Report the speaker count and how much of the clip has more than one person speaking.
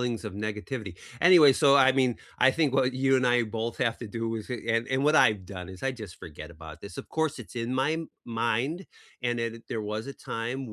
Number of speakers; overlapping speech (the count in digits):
1, no overlap